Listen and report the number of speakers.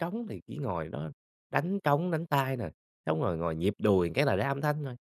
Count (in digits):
1